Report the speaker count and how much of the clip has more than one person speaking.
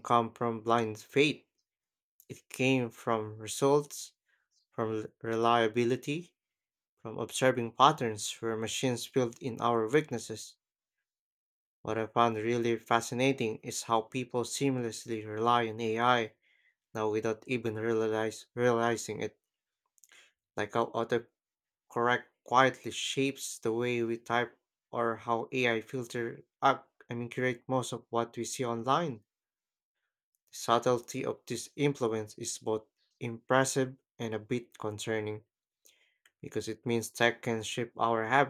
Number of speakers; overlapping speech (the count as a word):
one, no overlap